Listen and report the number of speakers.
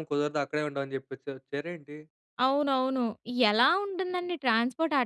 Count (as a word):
two